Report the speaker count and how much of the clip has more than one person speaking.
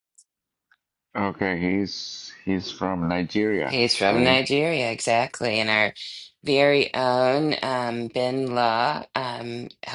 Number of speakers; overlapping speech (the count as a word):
two, about 7%